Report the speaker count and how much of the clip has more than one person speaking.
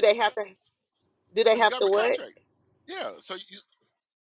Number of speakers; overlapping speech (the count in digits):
2, about 15%